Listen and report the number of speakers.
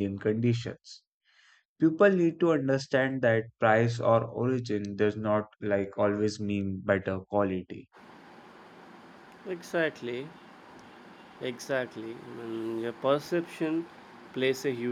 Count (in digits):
2